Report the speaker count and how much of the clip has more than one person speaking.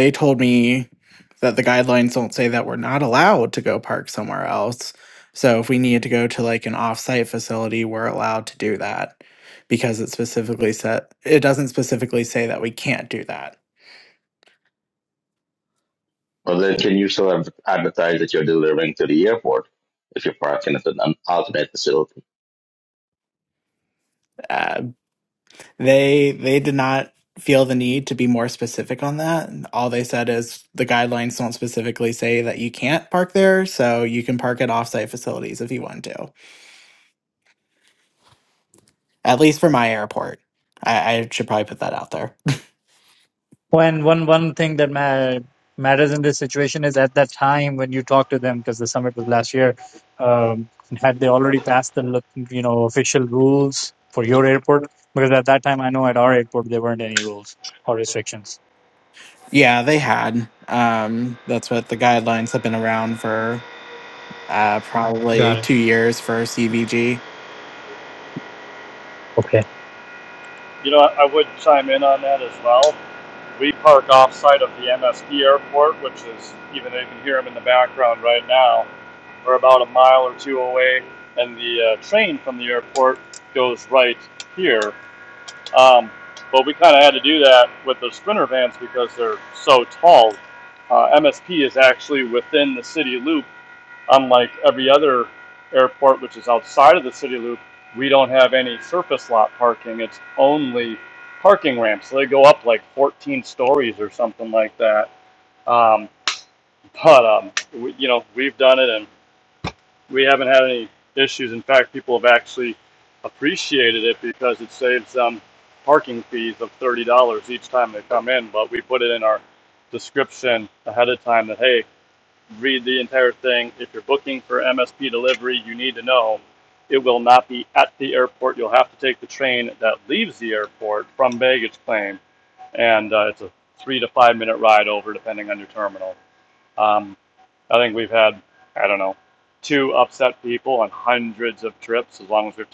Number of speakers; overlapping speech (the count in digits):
4, under 1%